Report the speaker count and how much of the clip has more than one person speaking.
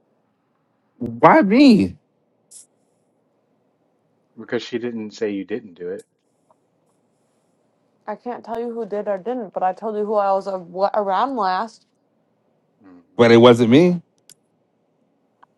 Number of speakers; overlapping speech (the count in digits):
3, no overlap